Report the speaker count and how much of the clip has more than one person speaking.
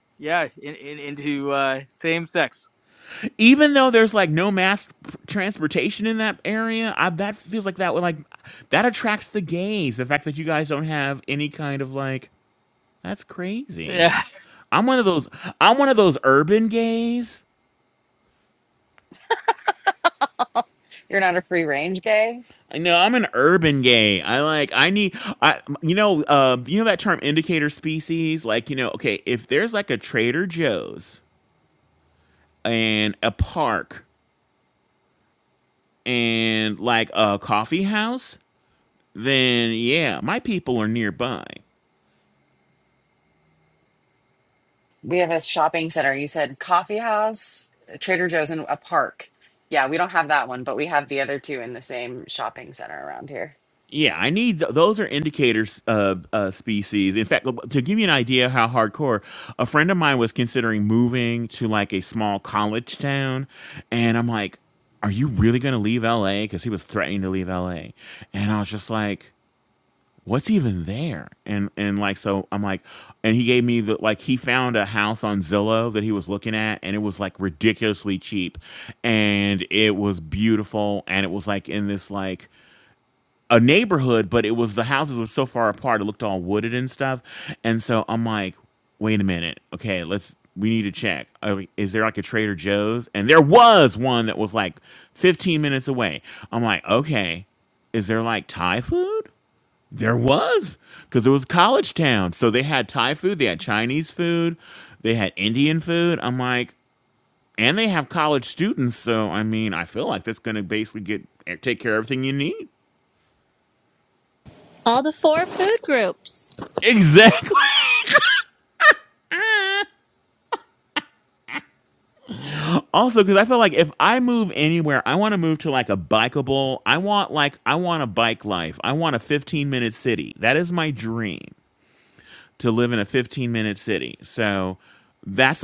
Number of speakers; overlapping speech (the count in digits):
4, under 1%